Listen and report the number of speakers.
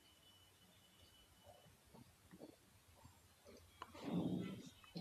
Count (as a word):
zero